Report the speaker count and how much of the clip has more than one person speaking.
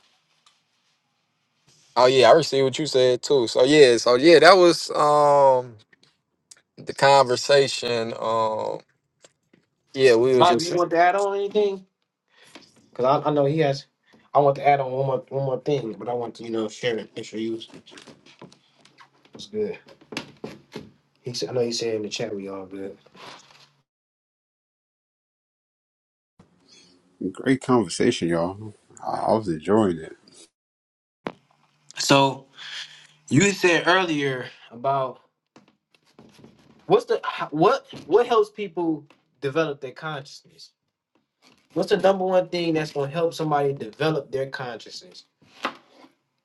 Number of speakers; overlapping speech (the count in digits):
3, about 1%